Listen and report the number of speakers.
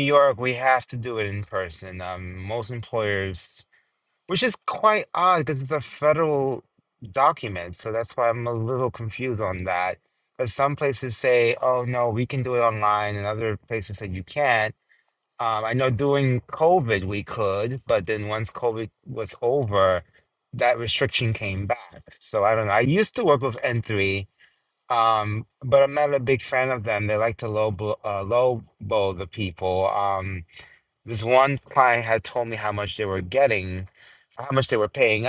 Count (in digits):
1